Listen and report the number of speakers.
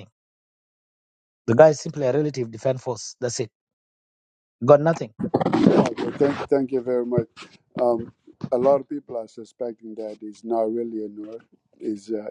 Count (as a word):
two